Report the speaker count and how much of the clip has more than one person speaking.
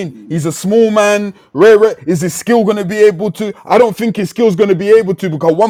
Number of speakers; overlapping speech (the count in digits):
1, no overlap